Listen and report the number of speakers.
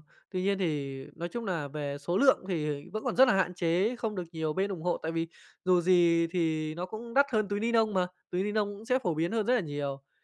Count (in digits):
1